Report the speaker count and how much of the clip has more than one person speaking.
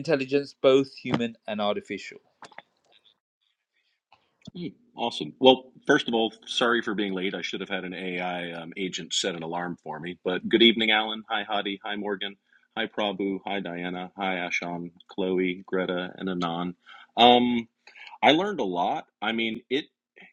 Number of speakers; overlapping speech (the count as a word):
two, no overlap